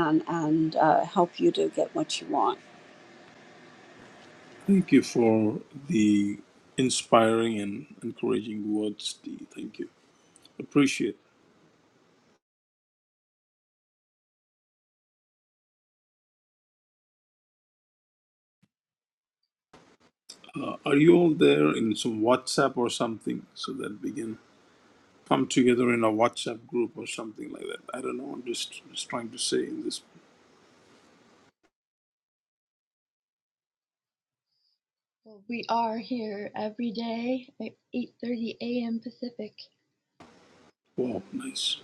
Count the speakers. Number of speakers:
three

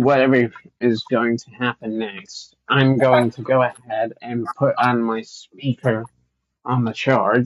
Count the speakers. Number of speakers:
one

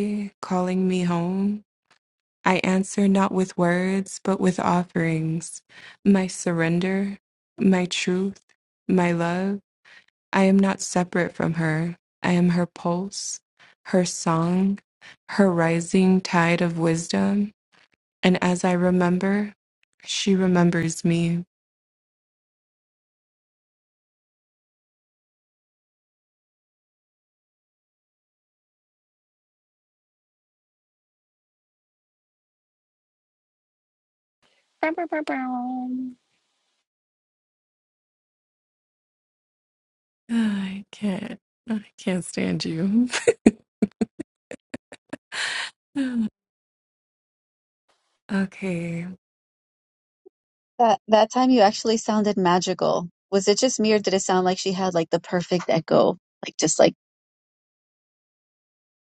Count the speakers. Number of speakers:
three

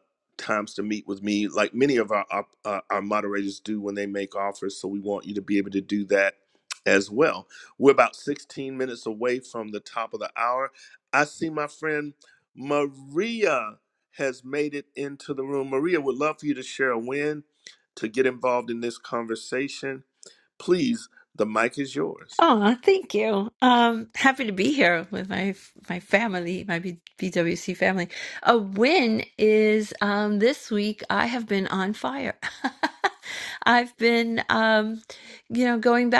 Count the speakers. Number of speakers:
two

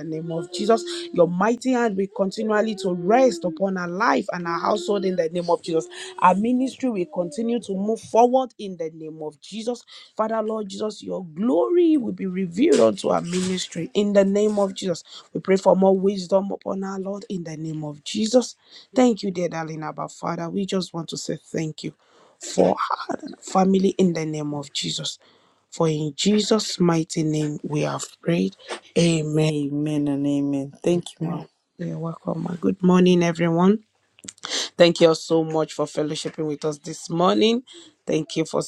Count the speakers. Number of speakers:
two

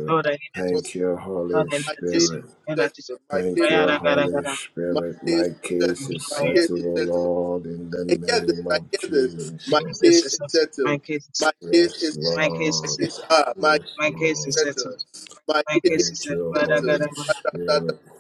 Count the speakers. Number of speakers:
three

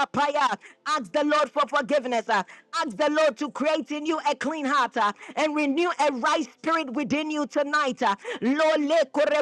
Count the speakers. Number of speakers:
one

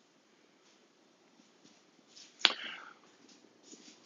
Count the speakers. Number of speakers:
zero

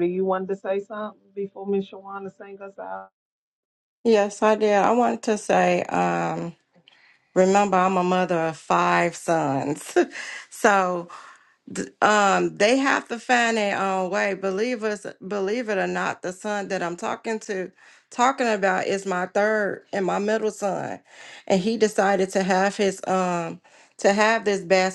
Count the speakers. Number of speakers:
two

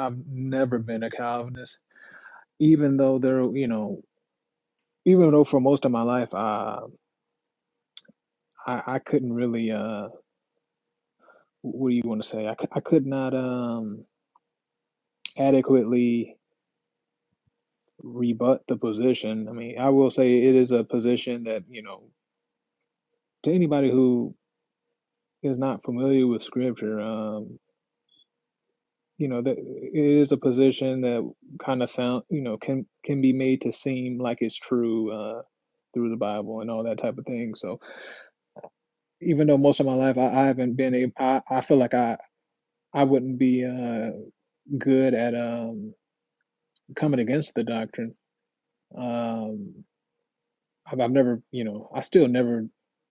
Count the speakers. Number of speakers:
one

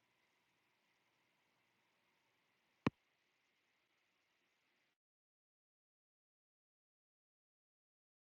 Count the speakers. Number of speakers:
zero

